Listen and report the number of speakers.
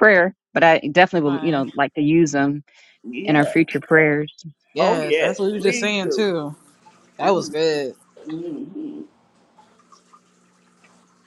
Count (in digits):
3